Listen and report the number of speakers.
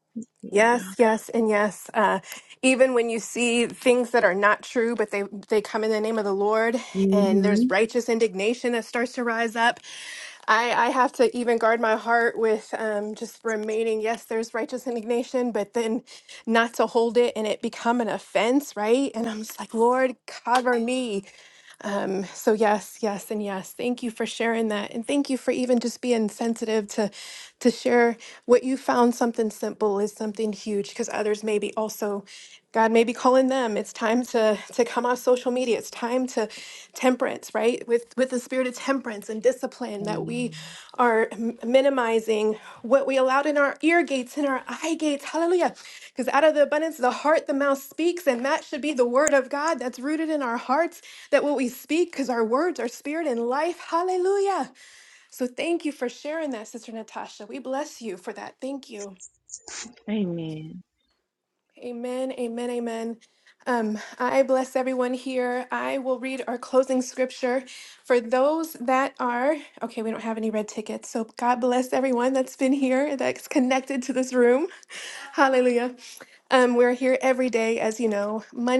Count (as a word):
two